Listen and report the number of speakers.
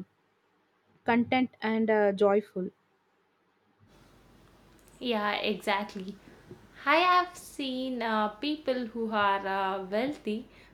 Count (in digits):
2